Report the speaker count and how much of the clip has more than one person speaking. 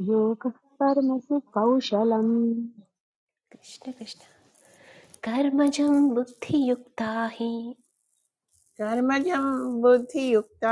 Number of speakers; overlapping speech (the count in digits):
3, no overlap